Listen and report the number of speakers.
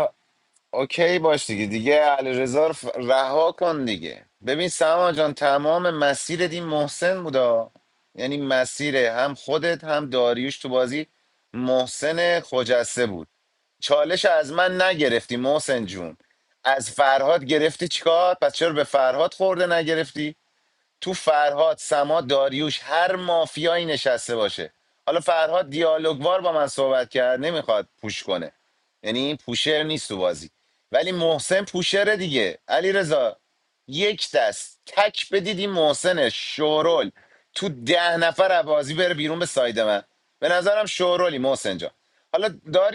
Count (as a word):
one